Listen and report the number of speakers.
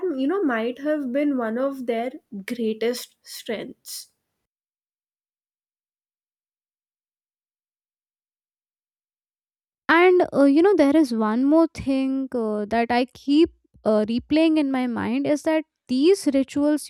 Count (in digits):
2